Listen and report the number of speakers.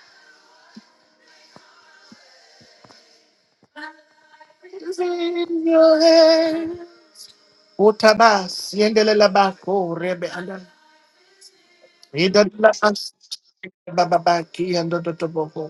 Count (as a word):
one